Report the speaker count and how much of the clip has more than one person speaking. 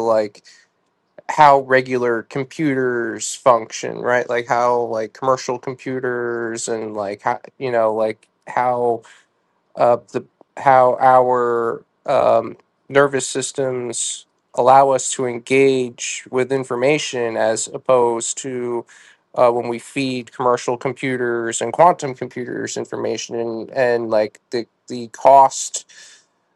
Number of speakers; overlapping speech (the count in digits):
1, no overlap